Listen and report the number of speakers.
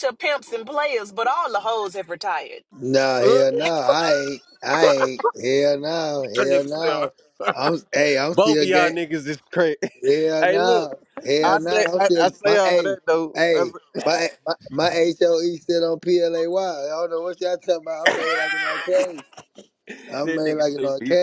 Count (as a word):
three